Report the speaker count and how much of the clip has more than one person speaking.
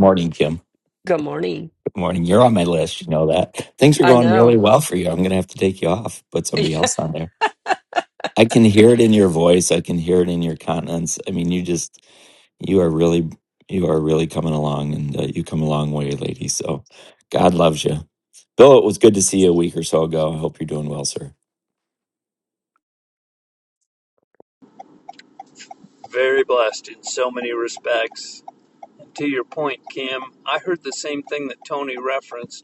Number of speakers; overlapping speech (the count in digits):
3, about 2%